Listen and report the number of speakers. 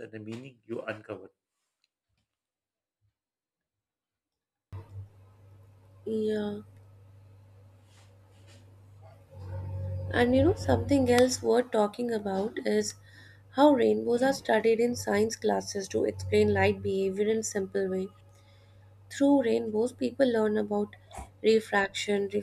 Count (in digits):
2